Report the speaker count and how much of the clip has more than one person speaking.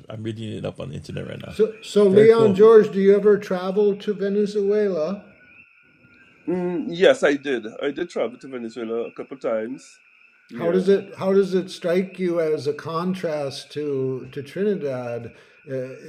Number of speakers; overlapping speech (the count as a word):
three, about 8%